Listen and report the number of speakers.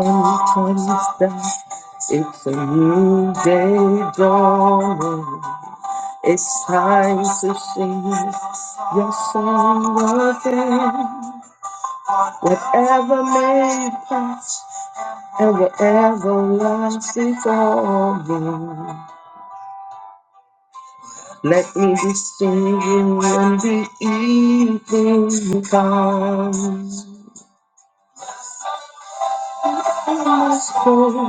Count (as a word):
one